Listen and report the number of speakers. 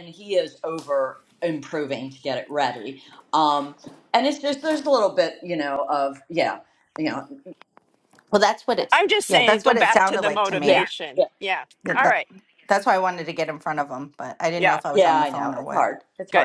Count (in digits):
3